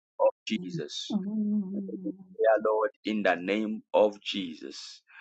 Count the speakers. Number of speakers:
one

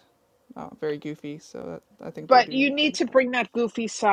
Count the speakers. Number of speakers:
two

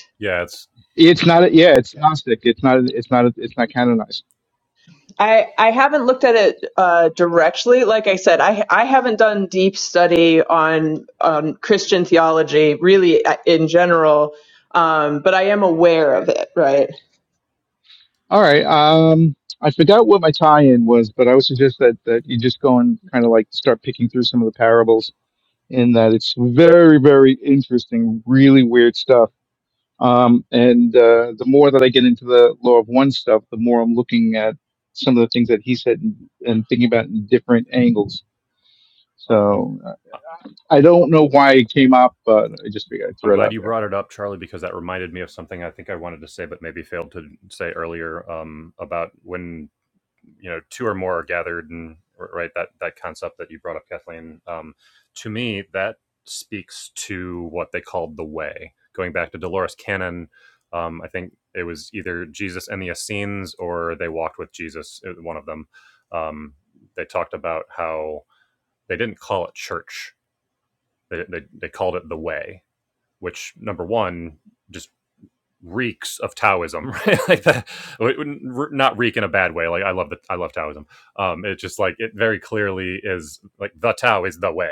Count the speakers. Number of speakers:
three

